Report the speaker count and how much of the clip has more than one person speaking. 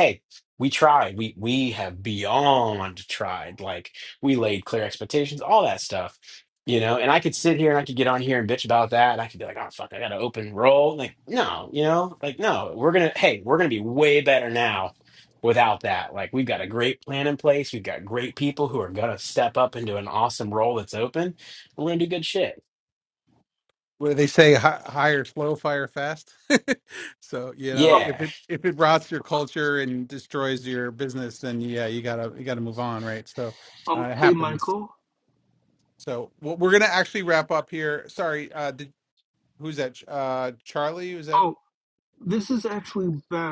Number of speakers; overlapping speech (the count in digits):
3, about 3%